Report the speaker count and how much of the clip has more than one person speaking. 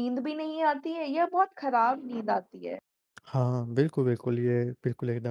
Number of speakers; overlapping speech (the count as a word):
two, no overlap